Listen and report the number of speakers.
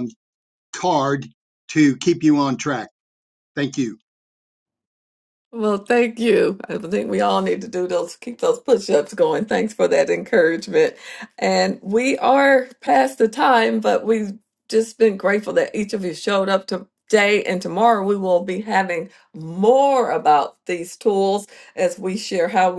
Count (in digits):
2